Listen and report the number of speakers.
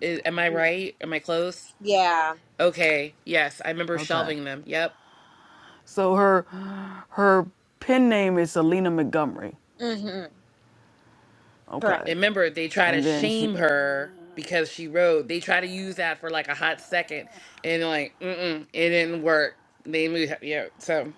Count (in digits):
3